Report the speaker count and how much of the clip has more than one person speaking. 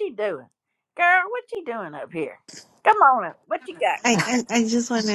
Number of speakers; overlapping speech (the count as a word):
two, about 4%